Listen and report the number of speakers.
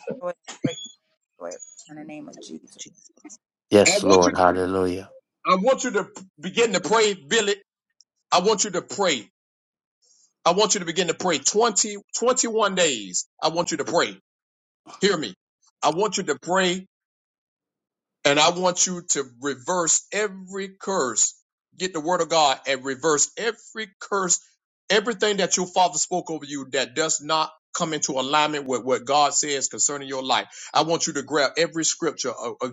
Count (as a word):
three